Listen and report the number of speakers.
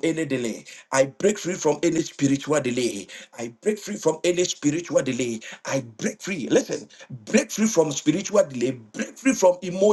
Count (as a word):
one